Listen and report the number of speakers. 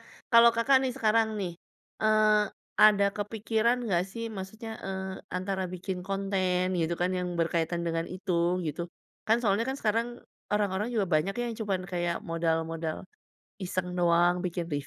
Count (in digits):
1